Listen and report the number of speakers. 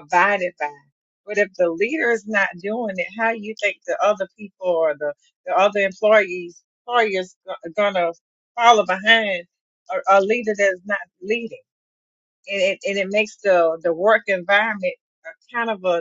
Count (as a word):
one